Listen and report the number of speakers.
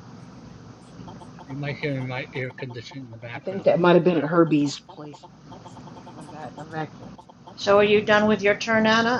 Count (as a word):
three